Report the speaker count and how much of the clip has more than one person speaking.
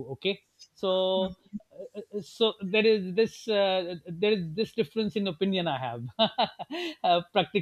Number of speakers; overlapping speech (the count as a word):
one, no overlap